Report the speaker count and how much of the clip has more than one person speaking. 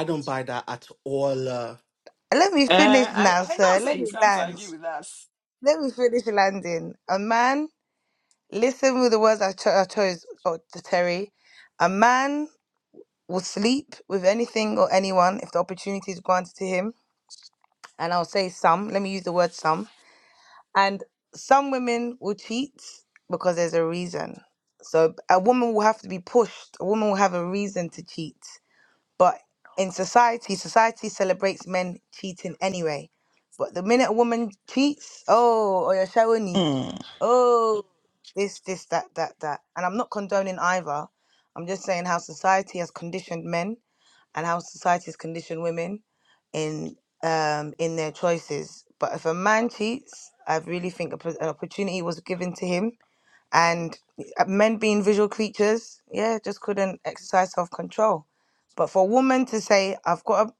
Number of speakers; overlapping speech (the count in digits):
3, about 3%